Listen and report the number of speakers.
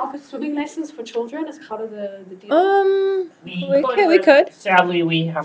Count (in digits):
3